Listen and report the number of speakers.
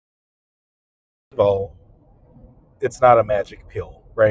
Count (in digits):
1